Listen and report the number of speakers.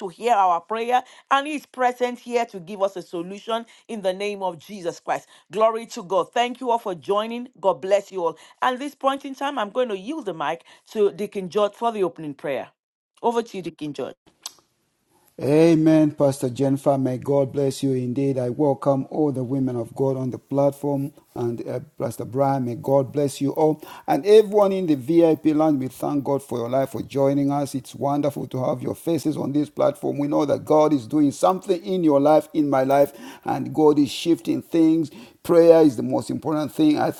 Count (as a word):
two